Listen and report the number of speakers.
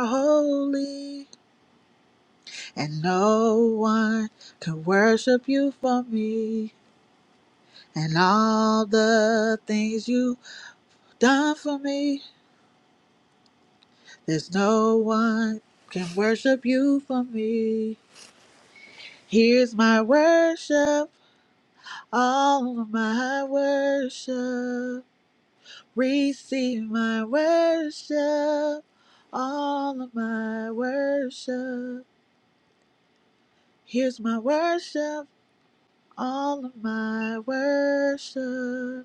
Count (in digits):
1